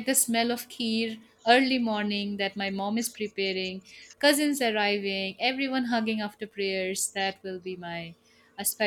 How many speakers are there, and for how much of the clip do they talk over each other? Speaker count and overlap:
one, no overlap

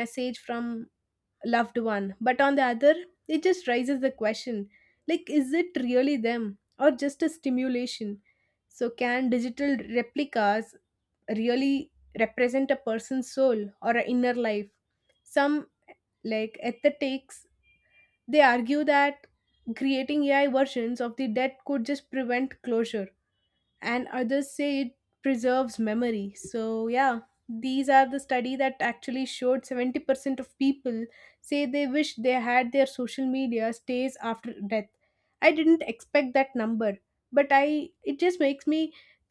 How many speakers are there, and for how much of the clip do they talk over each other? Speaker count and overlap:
one, no overlap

